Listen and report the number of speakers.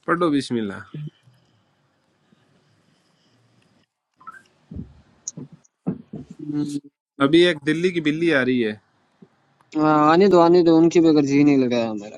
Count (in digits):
2